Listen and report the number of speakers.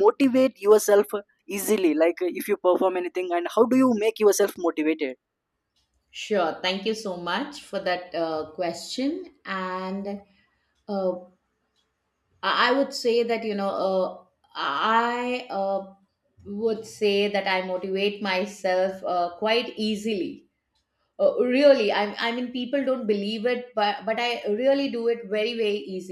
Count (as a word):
two